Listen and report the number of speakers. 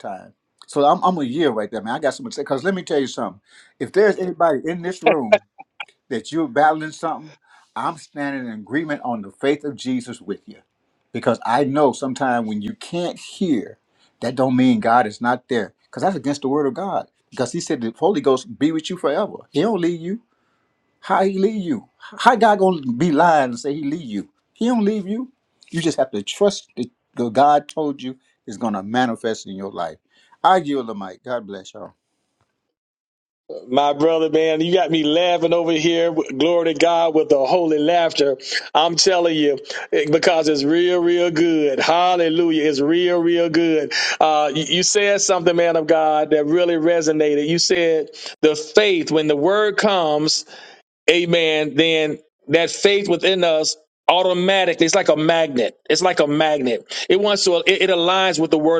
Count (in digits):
2